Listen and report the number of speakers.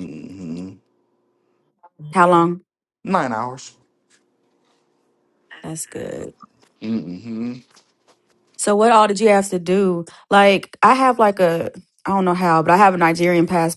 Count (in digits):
2